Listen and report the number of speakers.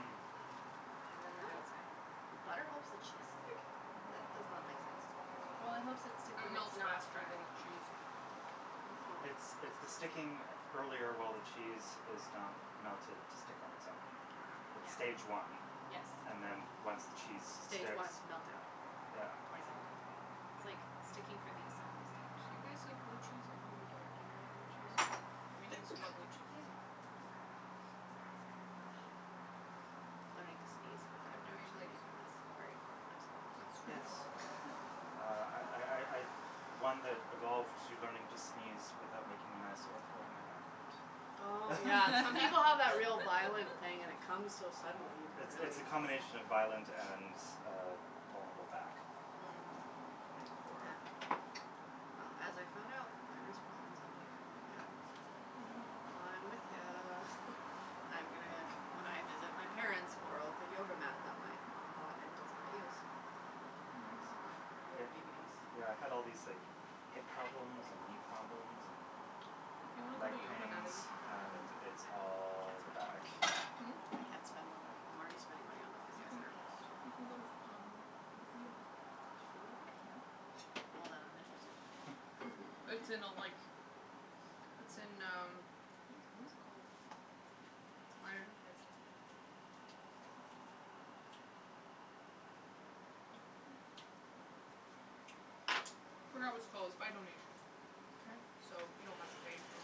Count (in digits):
4